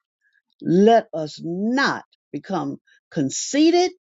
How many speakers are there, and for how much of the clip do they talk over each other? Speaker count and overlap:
1, no overlap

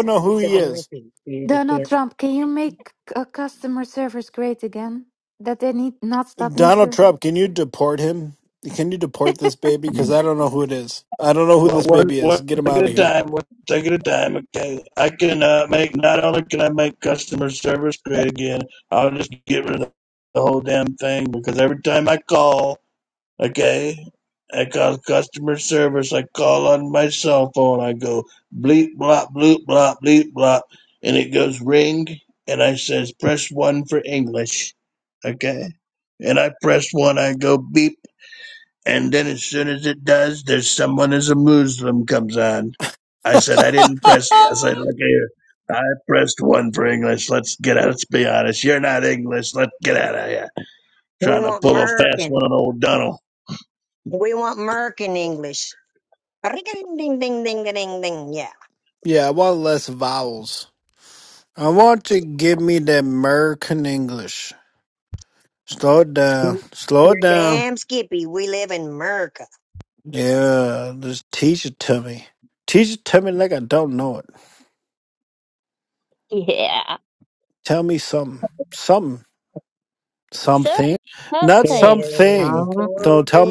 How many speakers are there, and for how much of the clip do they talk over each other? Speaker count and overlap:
5, about 8%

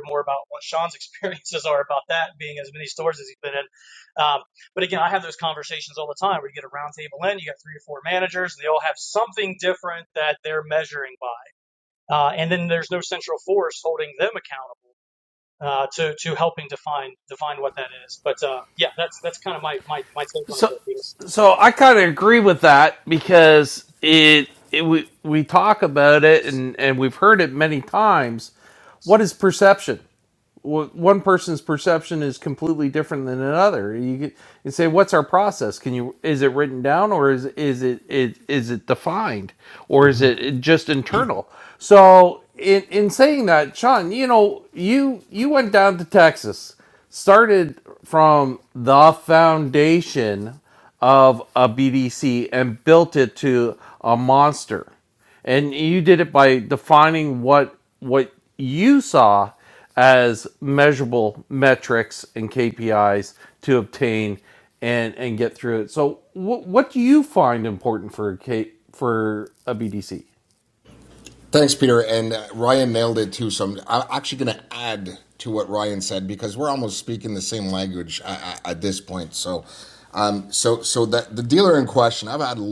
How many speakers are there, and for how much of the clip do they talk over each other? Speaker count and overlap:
3, under 1%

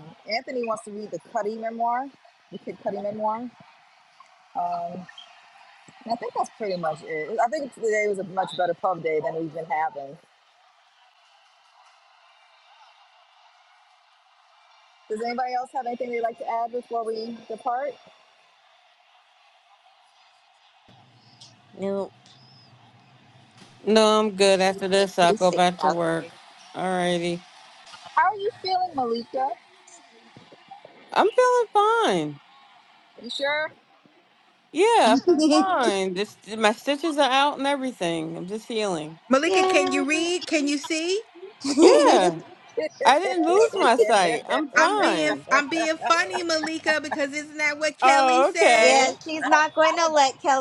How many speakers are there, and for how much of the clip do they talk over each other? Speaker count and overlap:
4, about 10%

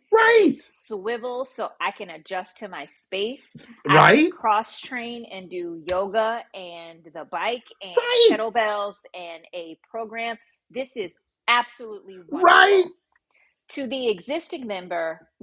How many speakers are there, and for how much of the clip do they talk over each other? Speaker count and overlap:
2, about 9%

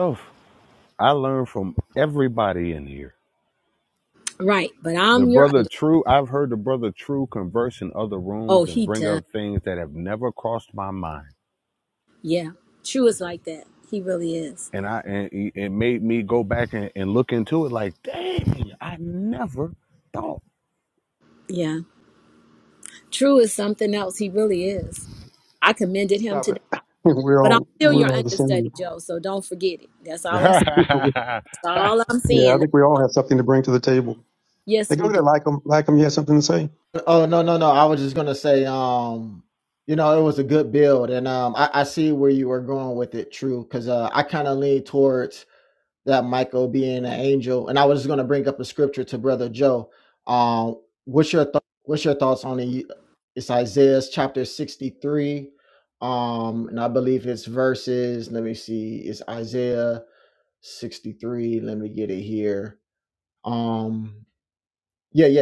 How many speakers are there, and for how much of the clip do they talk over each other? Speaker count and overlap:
4, about 5%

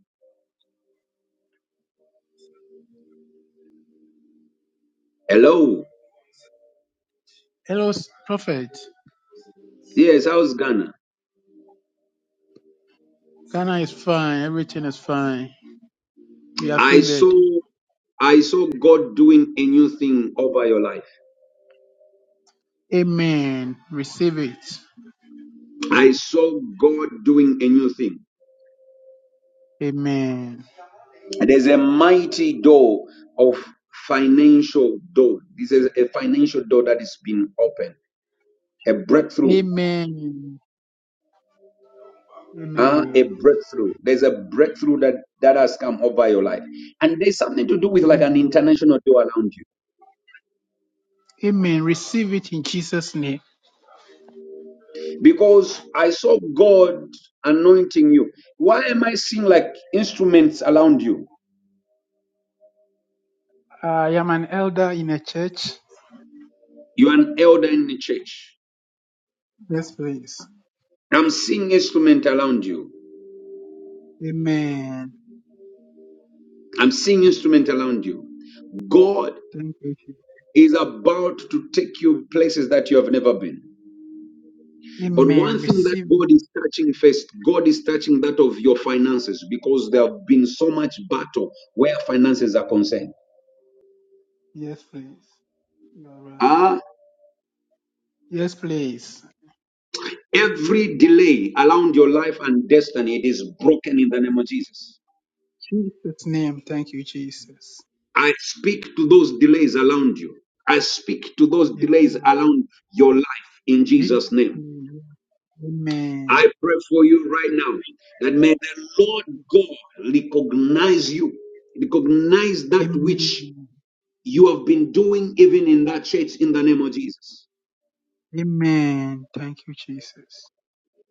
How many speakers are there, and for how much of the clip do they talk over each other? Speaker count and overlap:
2, about 3%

